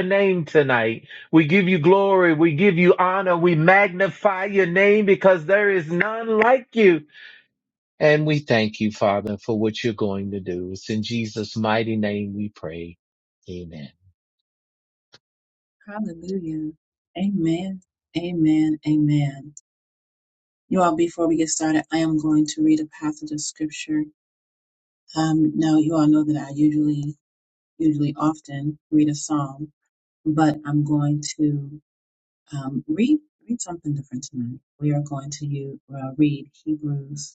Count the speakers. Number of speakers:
2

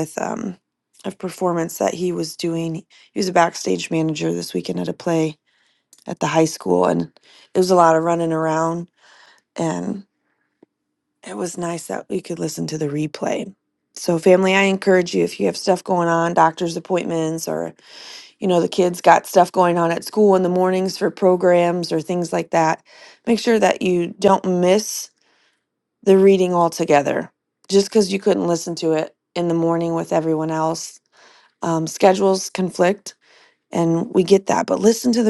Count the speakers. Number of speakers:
1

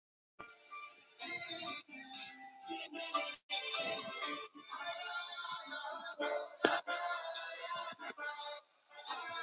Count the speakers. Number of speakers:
0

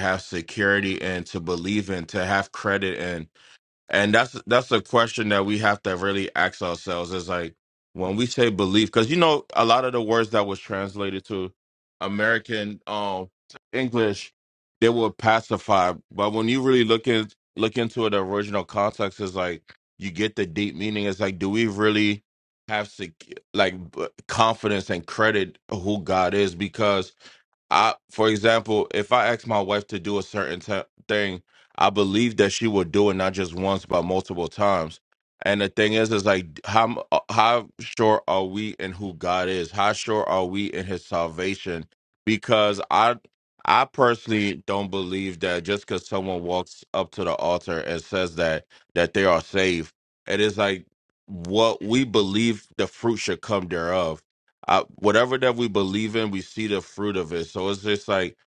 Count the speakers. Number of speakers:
1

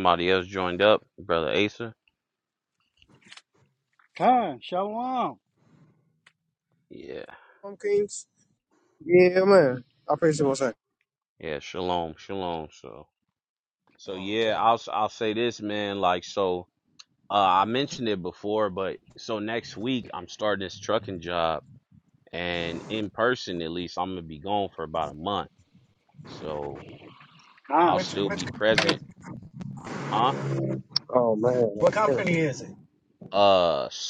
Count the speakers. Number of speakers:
4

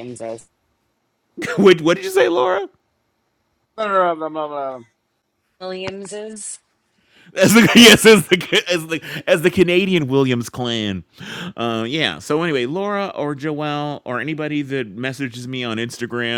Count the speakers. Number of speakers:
3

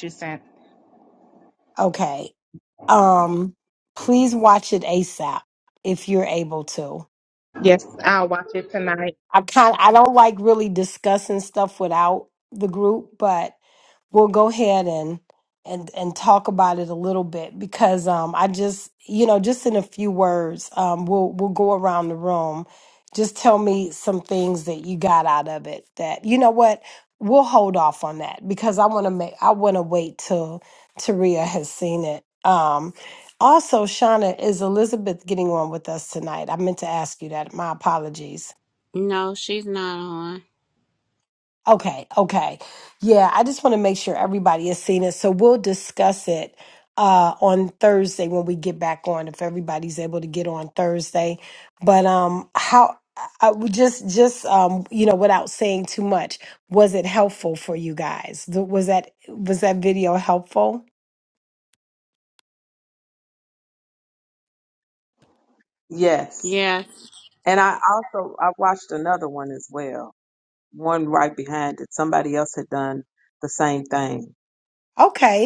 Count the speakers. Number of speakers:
4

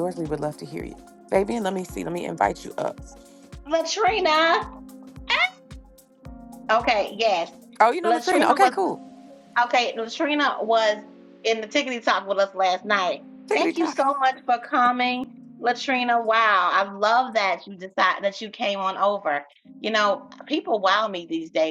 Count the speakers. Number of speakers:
2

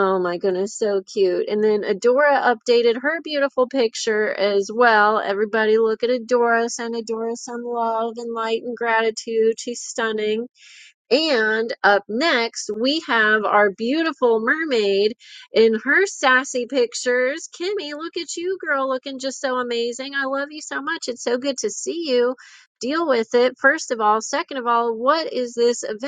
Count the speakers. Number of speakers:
1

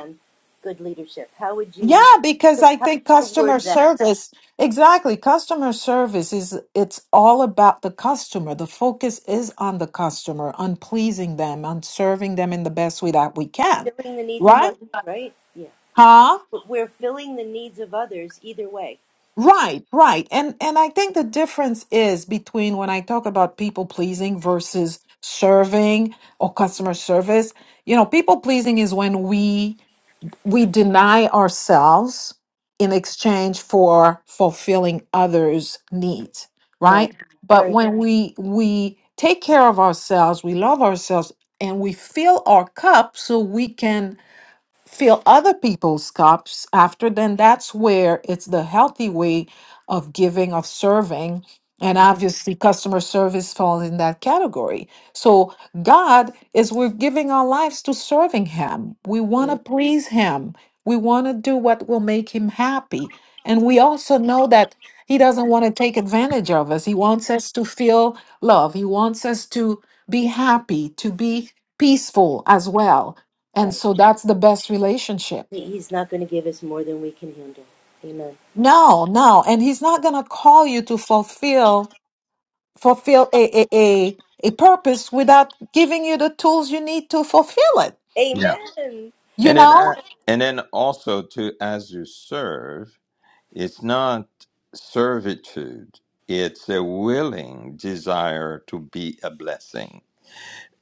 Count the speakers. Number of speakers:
3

